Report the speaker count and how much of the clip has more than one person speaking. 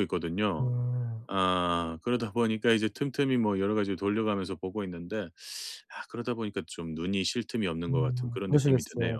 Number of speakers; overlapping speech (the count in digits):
2, about 16%